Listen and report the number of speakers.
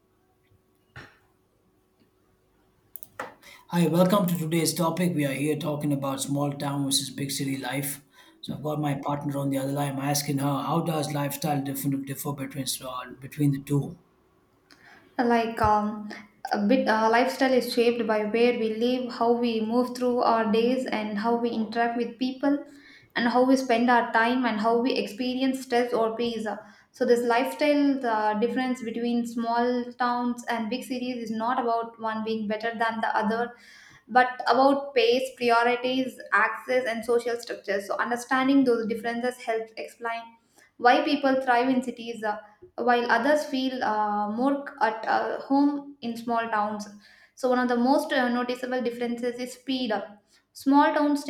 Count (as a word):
two